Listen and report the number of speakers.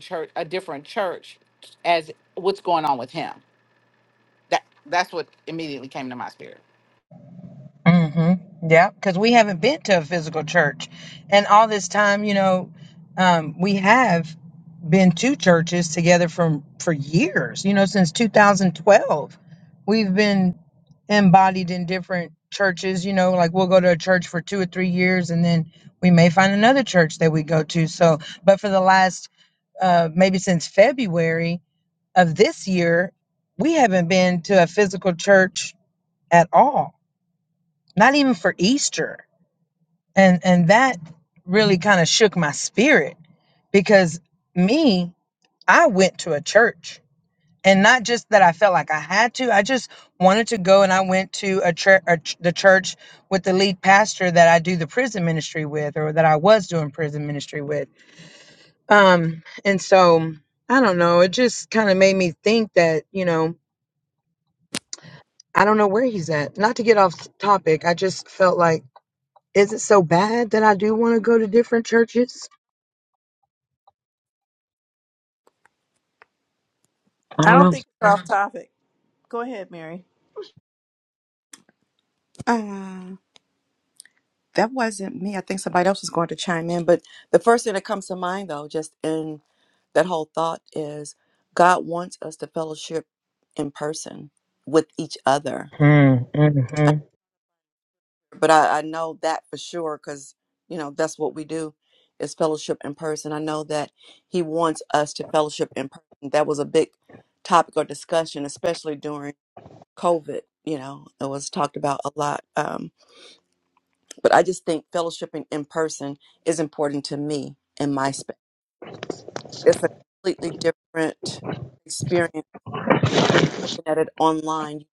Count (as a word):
four